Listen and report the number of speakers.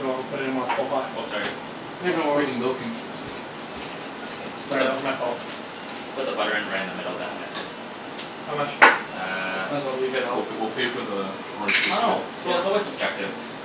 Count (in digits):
4